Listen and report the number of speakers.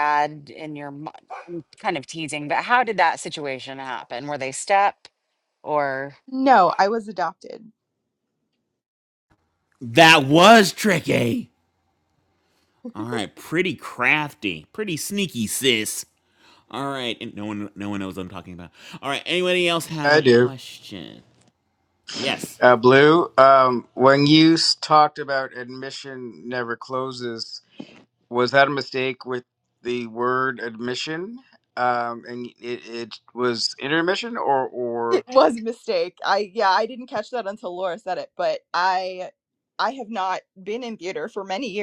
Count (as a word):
four